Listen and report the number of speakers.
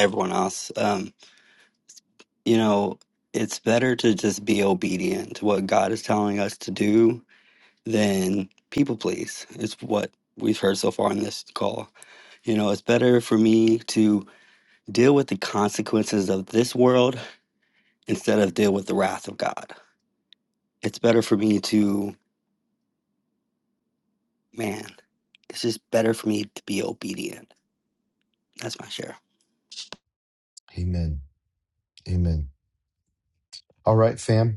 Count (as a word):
two